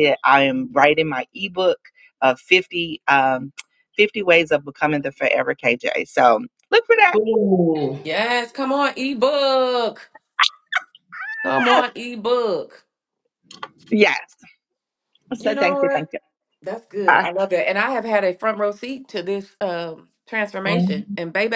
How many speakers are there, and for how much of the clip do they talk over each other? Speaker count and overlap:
three, about 7%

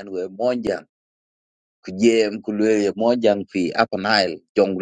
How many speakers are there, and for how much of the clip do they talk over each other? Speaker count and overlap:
one, no overlap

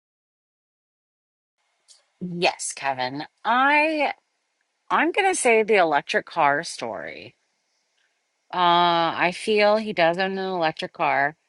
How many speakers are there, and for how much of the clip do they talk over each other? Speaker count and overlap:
one, no overlap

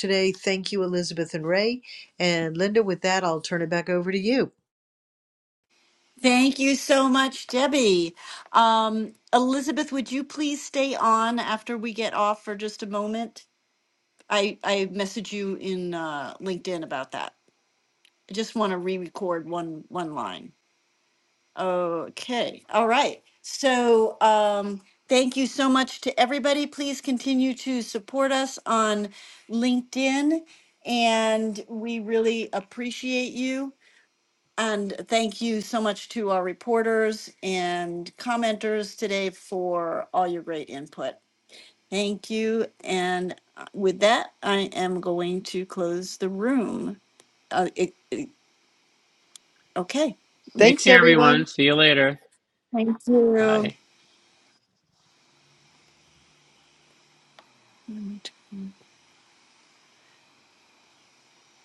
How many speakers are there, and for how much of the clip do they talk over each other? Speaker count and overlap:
three, about 2%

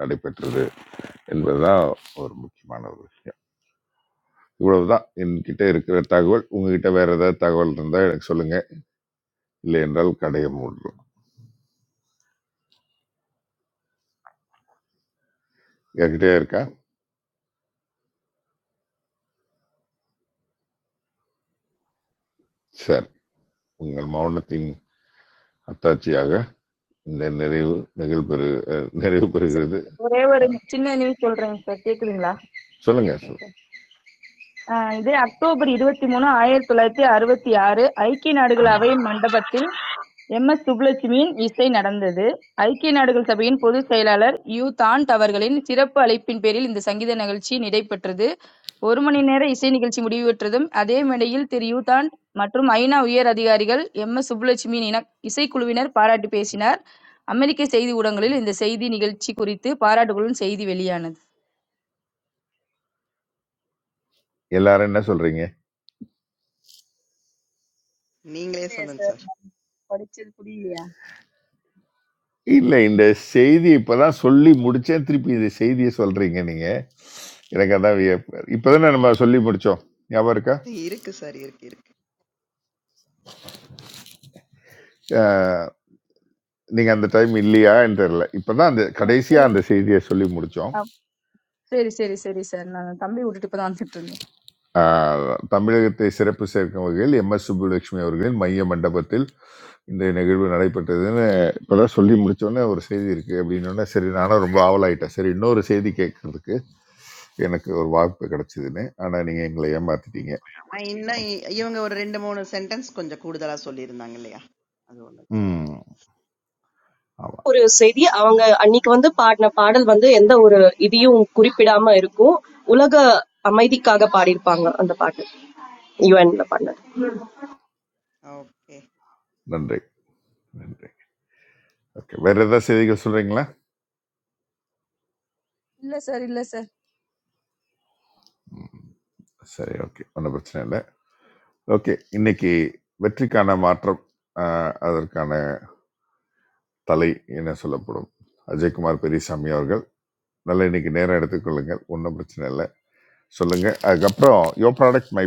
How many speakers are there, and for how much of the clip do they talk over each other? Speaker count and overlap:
four, about 1%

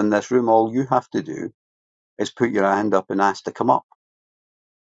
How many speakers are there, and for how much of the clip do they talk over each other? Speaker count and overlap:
one, no overlap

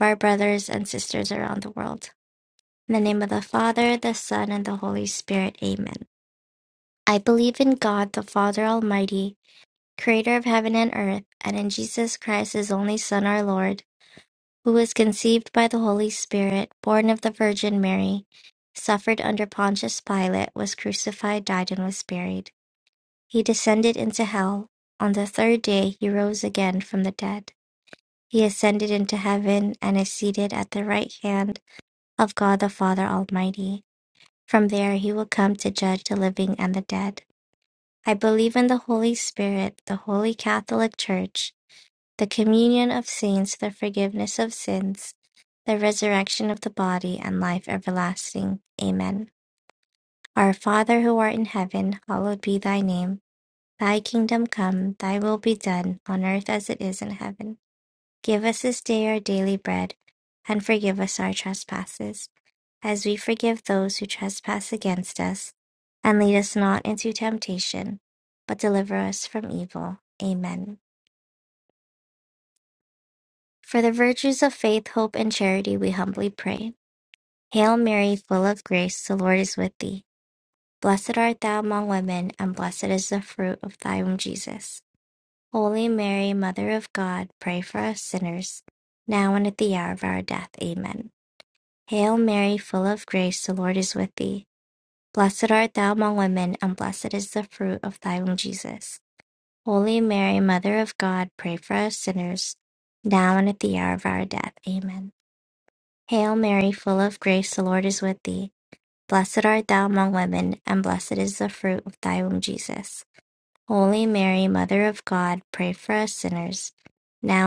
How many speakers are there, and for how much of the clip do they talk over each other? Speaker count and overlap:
one, no overlap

